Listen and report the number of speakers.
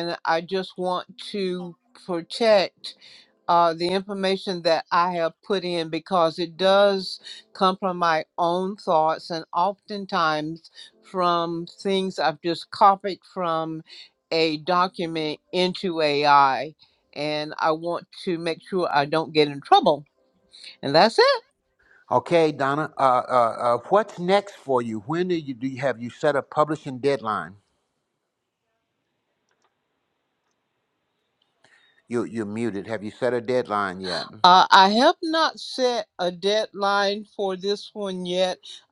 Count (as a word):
two